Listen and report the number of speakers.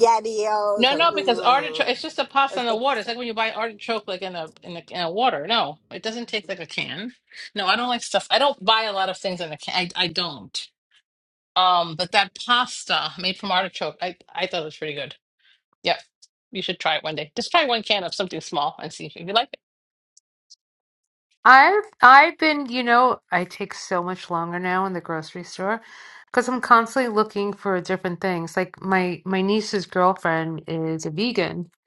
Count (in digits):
3